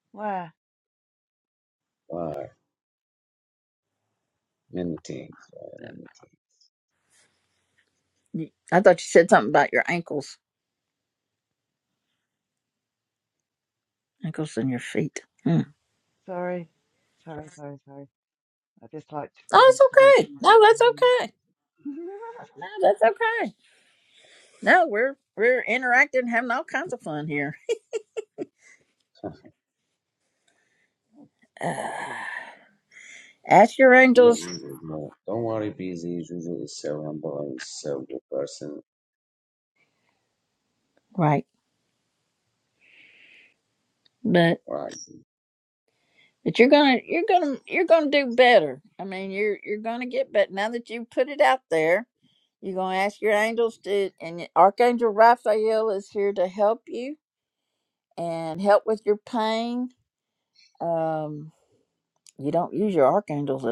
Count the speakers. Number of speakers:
3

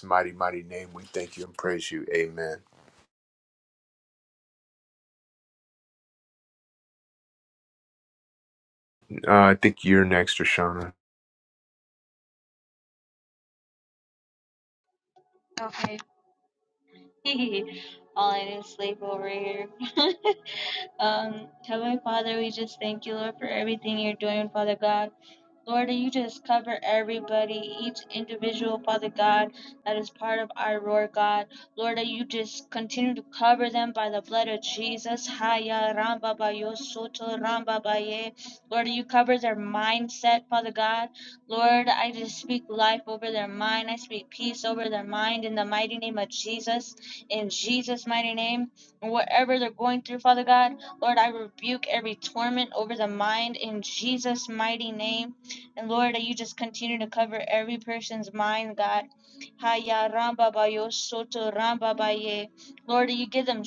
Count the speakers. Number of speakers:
2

